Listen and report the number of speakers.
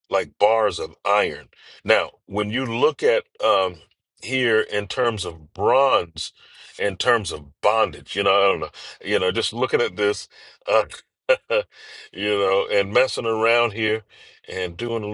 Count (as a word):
one